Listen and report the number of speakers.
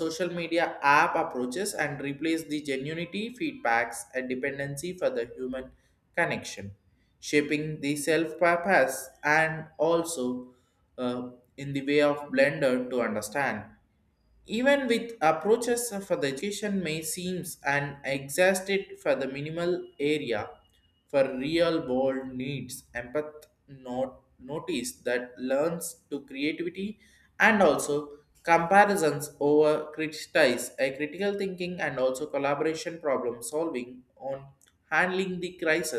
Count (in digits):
1